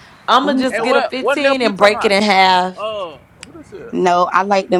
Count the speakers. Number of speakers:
3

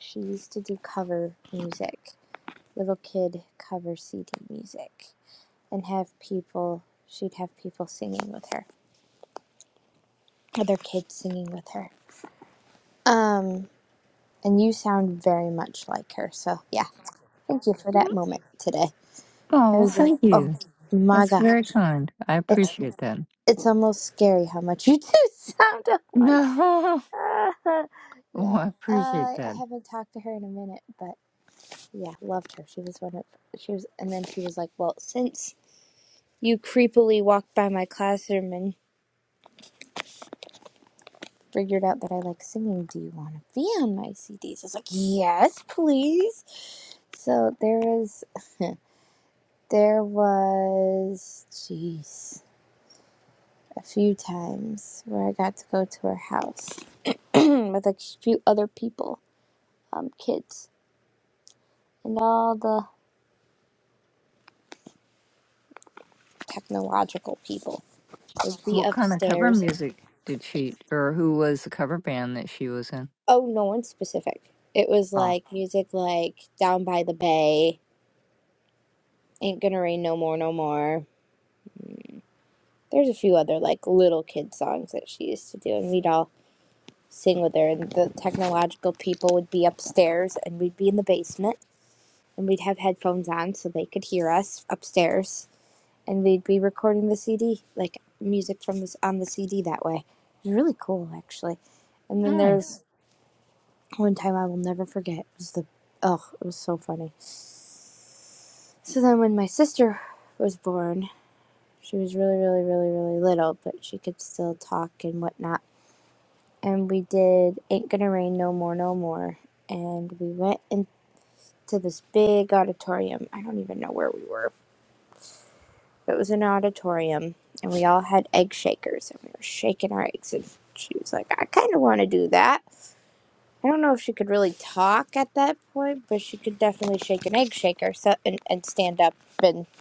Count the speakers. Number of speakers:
2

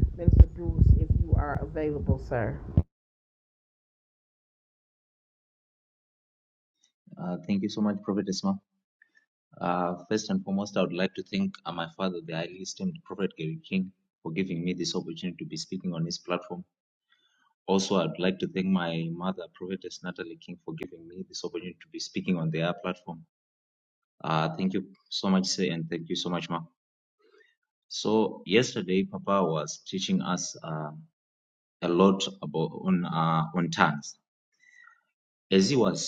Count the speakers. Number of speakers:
2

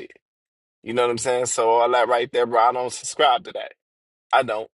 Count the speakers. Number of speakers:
1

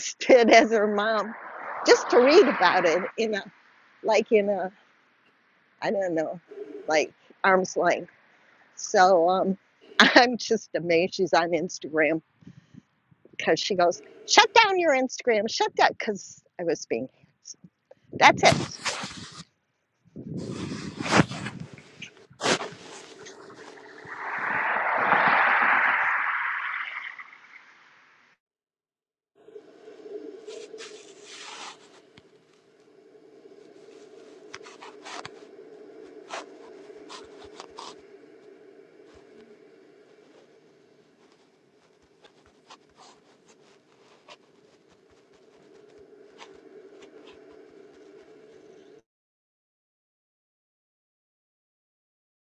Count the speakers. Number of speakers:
1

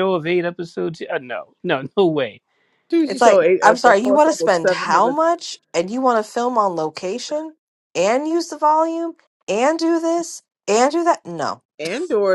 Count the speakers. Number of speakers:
3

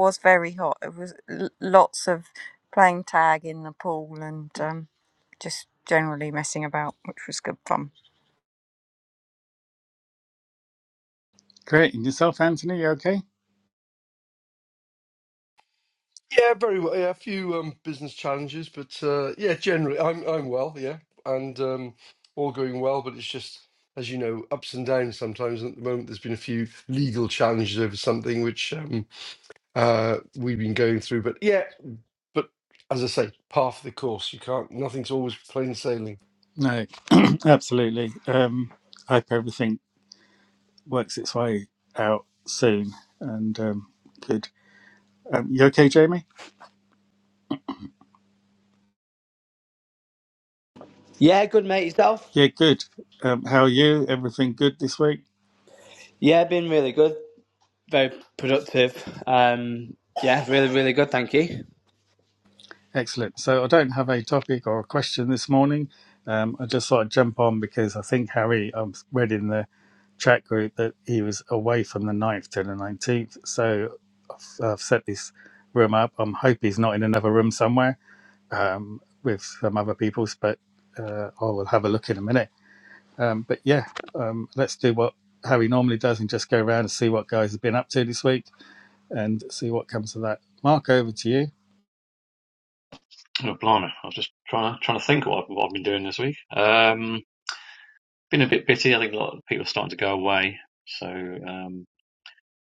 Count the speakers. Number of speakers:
5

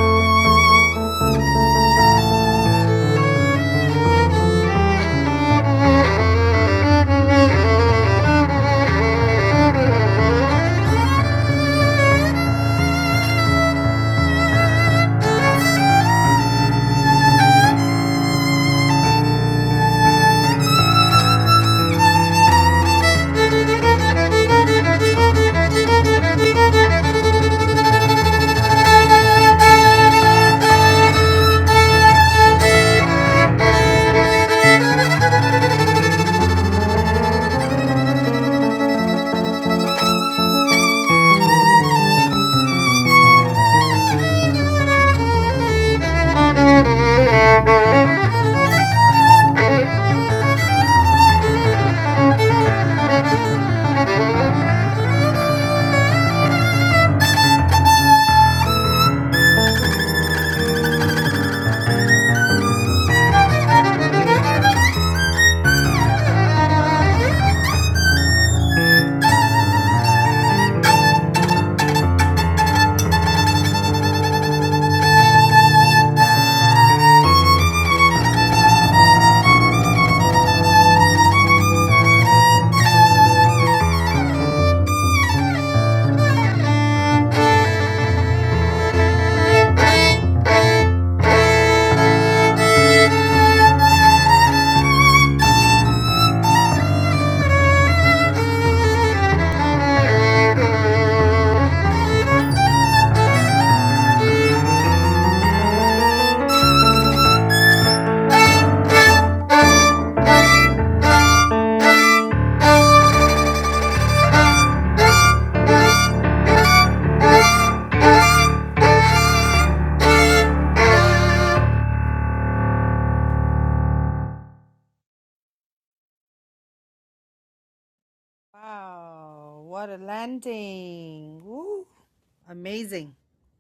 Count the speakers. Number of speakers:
2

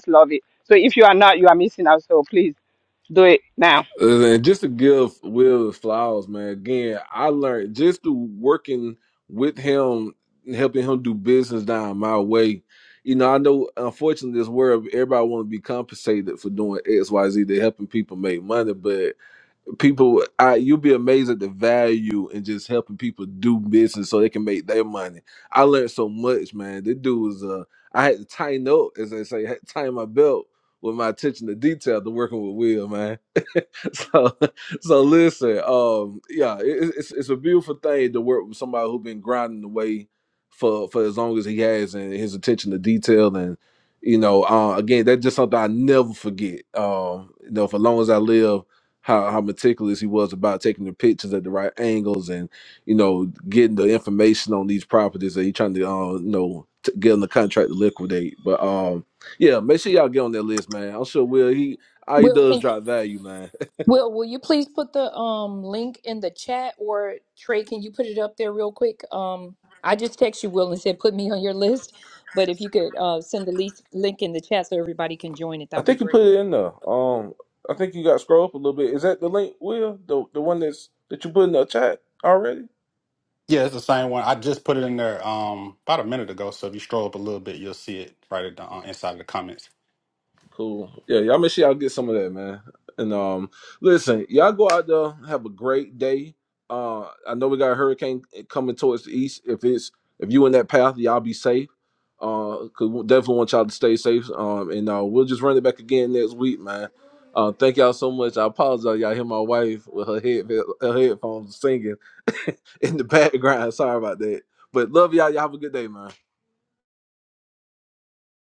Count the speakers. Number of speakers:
4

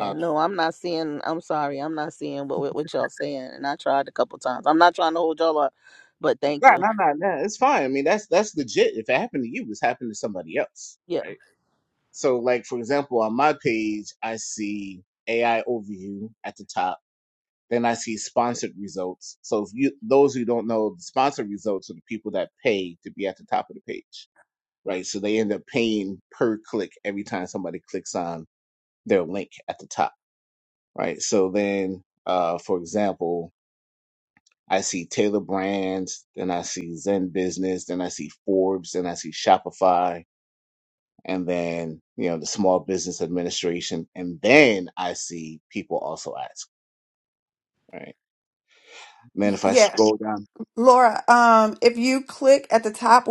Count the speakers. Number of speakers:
3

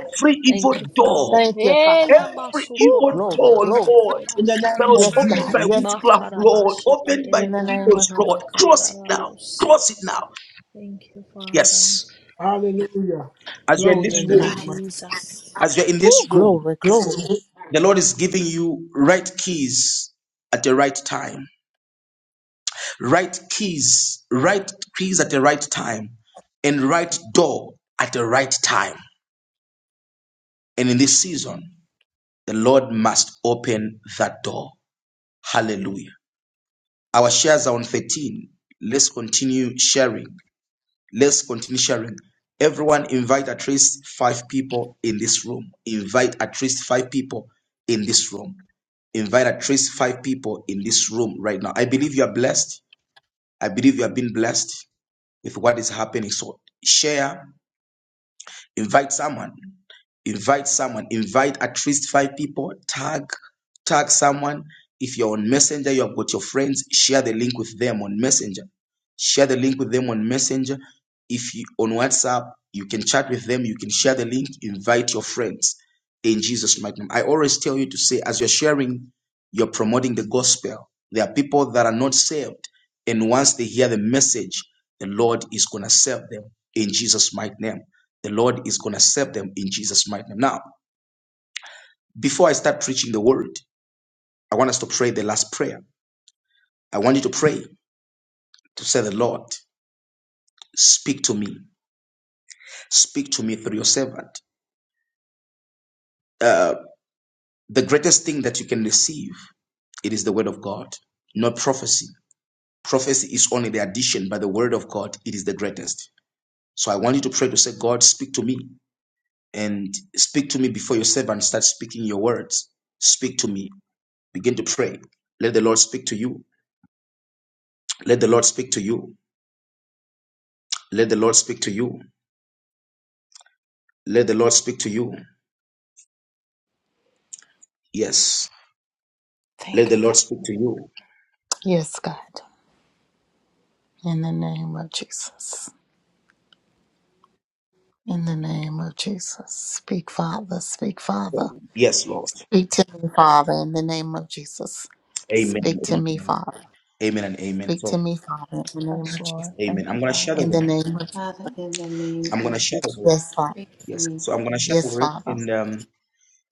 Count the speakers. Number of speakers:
5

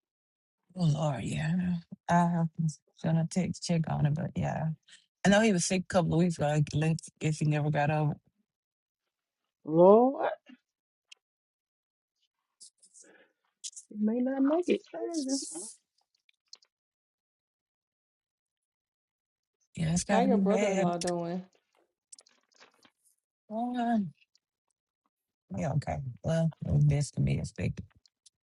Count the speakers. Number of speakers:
3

